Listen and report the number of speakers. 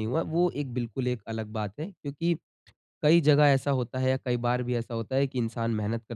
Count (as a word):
one